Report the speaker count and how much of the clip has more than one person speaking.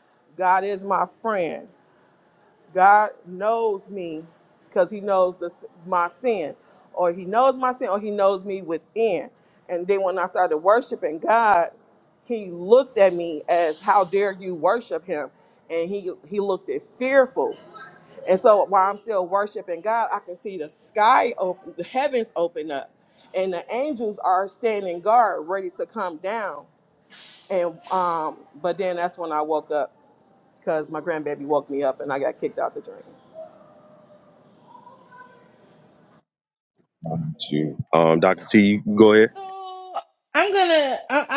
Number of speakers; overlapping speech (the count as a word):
three, no overlap